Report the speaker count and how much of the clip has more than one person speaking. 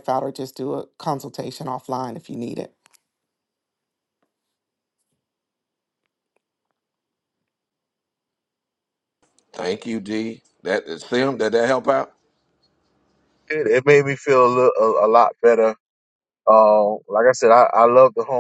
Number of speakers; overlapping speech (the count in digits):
3, no overlap